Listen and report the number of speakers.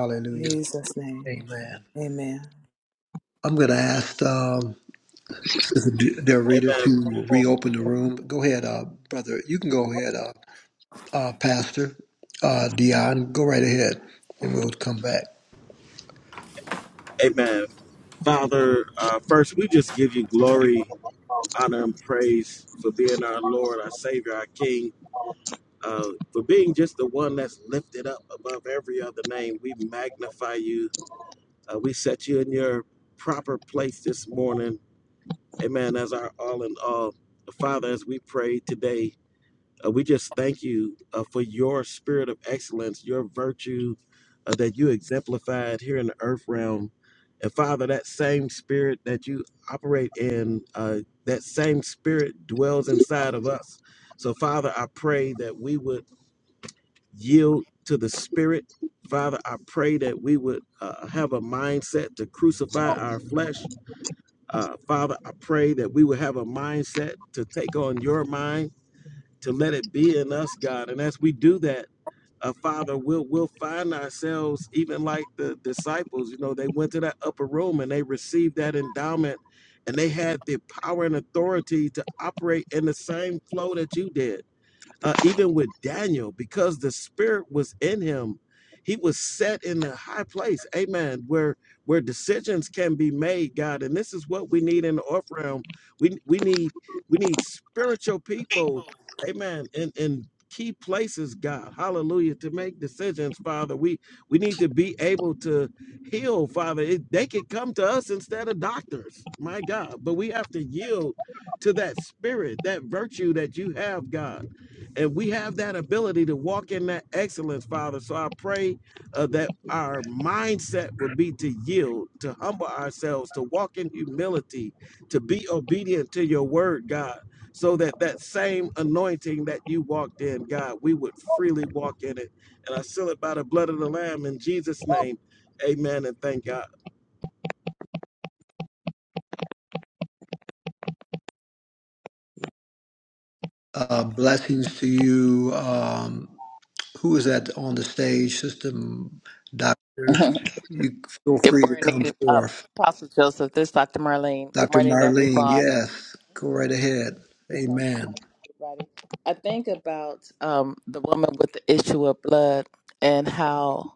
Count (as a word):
four